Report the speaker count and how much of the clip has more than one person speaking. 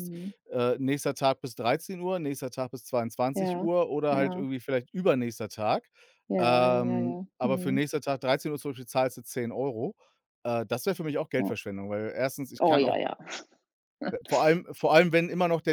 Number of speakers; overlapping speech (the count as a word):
two, about 17%